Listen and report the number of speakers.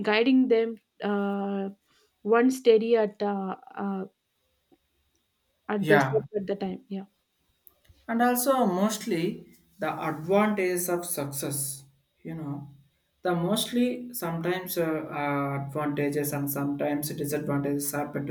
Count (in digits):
2